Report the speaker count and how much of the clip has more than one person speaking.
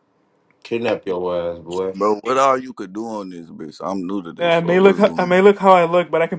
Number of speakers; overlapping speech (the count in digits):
3, about 16%